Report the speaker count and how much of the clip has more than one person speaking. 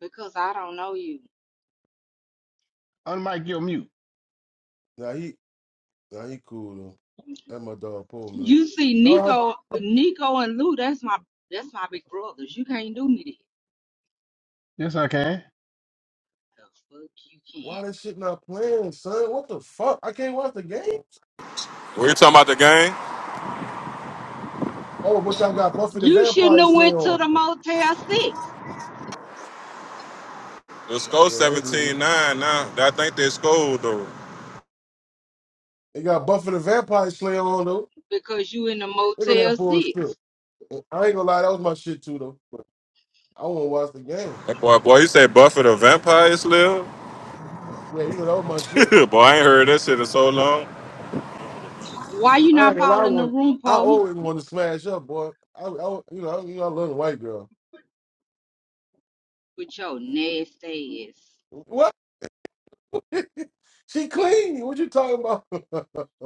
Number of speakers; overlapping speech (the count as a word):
four, about 7%